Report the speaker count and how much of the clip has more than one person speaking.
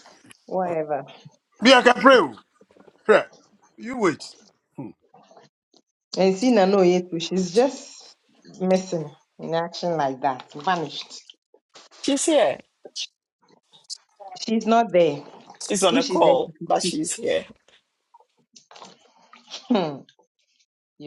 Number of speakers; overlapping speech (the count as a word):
three, about 5%